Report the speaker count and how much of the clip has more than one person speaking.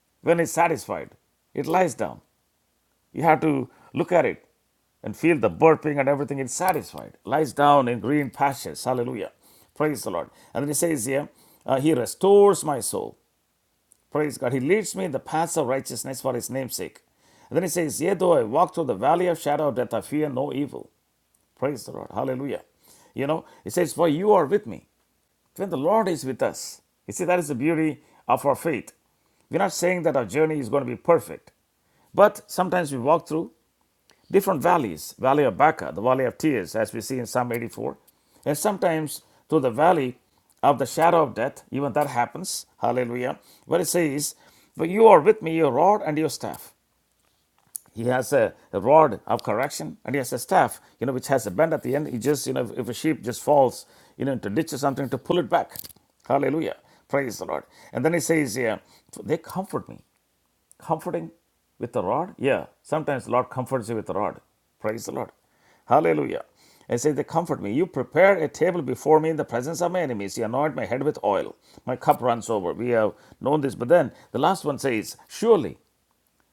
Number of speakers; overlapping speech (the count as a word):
one, no overlap